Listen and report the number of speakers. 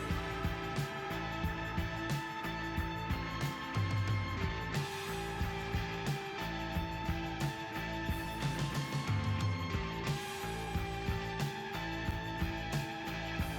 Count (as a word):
zero